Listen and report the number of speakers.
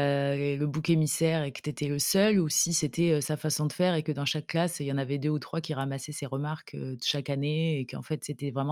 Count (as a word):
one